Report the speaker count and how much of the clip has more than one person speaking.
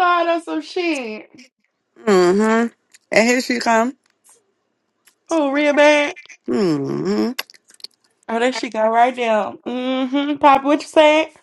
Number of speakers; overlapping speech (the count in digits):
2, no overlap